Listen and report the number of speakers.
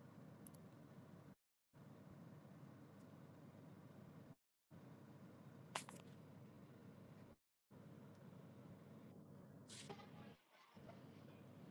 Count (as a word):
zero